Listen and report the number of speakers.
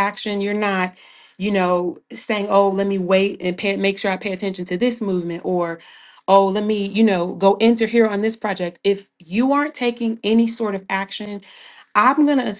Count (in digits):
1